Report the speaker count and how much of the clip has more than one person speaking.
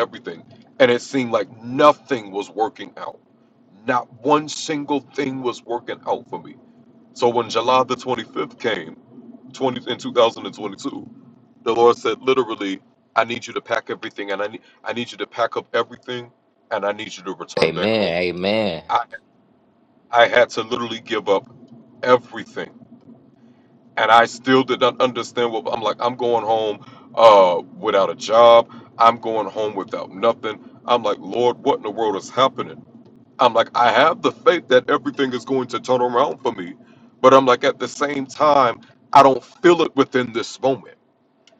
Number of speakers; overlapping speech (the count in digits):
2, about 1%